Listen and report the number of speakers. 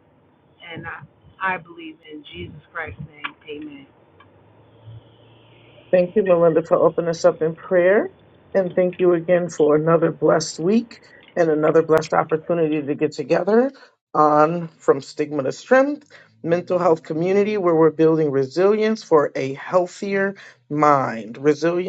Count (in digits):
2